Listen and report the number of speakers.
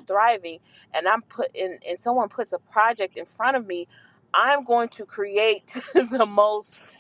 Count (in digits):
1